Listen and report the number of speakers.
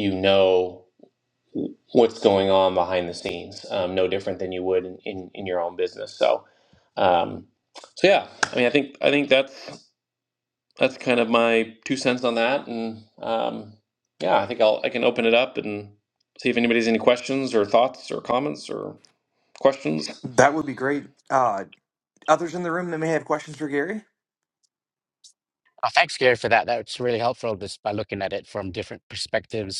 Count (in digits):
3